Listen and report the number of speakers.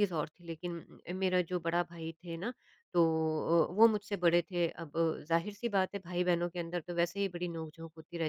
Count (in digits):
1